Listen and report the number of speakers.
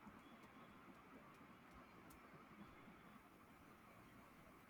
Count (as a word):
zero